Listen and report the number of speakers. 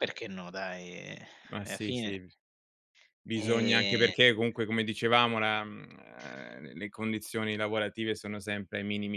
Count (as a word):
two